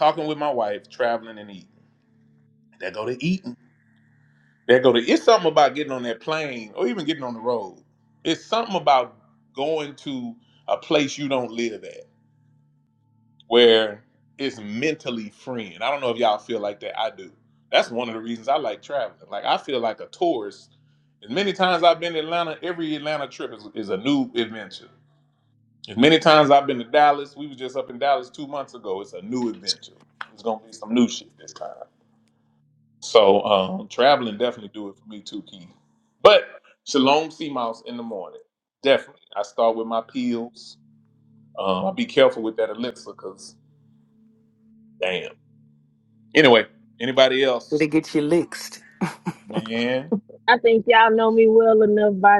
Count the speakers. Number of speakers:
3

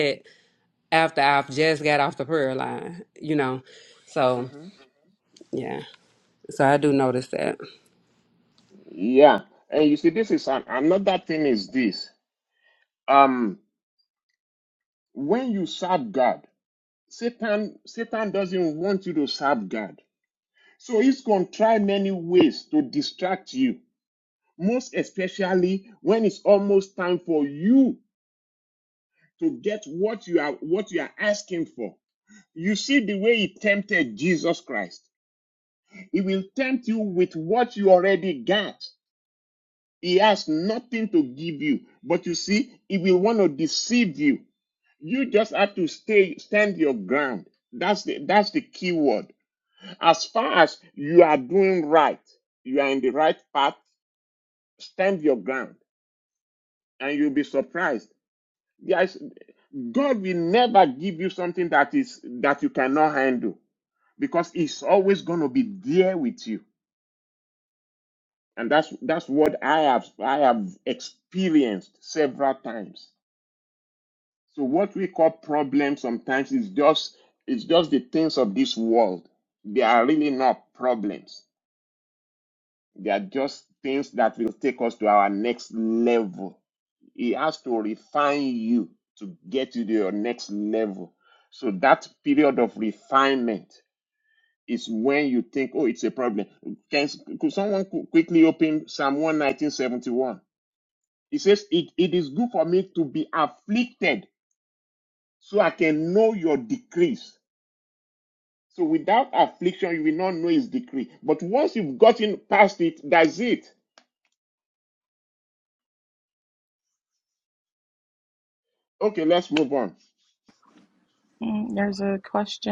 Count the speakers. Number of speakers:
3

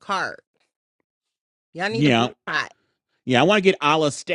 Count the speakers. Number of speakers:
2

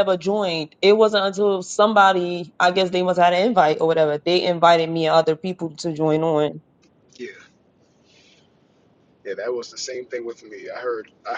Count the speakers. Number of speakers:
2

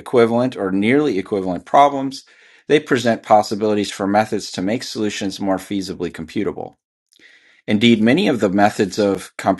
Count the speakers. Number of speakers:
1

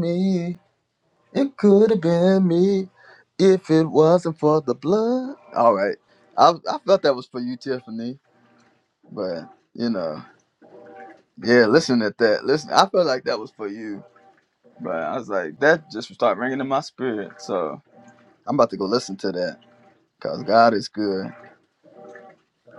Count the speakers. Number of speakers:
1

